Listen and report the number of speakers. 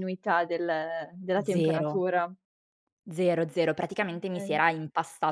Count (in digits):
2